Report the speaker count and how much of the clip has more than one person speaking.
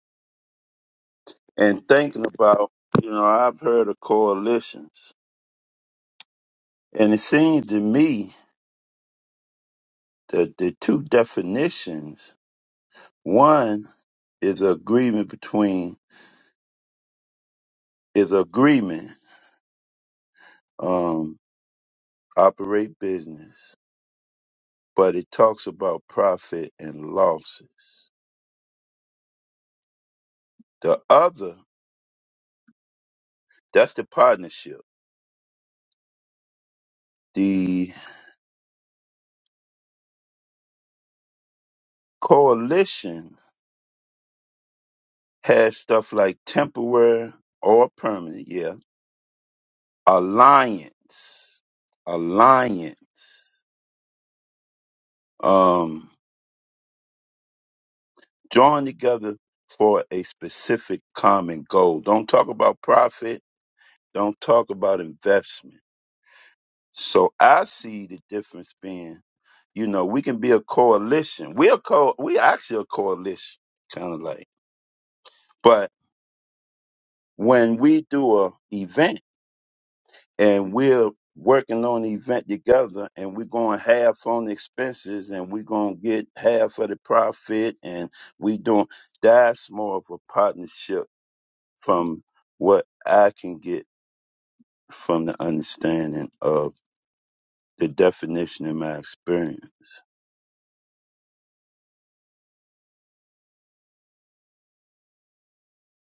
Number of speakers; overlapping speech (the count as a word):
one, no overlap